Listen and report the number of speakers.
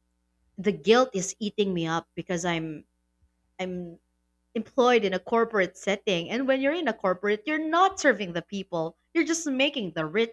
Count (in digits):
1